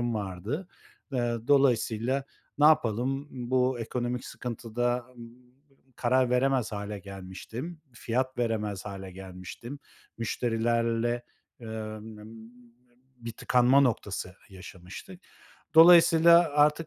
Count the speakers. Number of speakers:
1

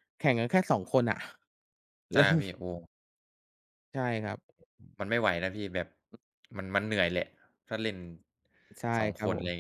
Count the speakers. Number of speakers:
2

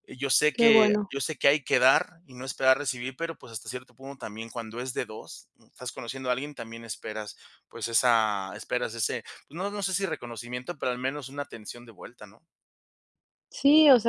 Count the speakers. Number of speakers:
2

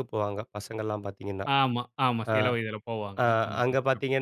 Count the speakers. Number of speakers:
2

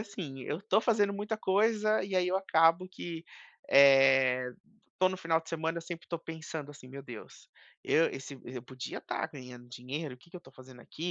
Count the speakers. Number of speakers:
1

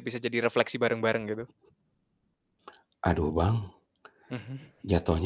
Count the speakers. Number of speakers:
2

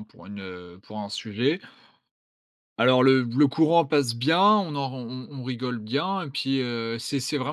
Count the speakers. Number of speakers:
1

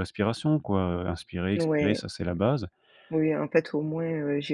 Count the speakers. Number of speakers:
2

